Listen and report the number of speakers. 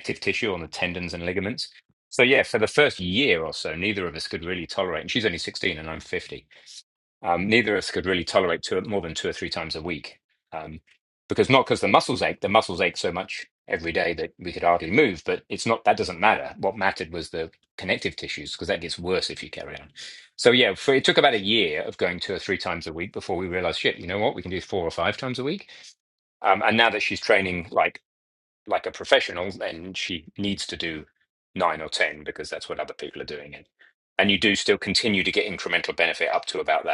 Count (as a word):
one